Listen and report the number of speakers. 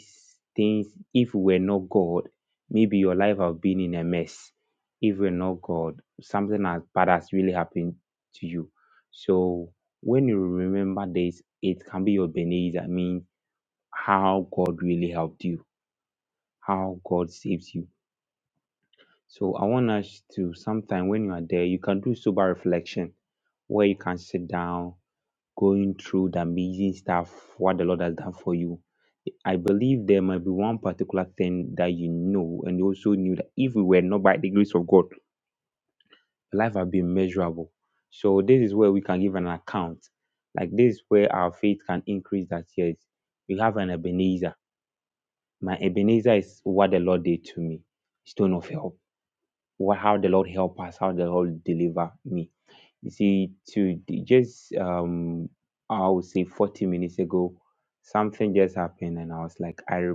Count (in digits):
1